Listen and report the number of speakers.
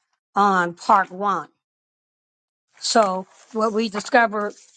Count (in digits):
1